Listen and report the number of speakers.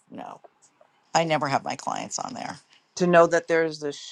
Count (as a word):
two